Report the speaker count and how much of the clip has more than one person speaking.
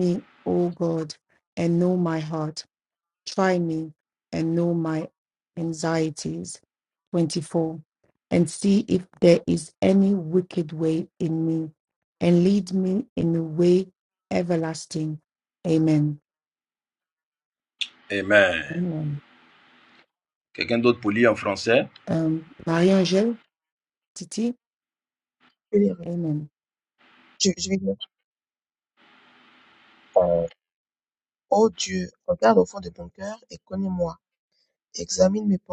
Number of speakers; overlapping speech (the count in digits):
3, under 1%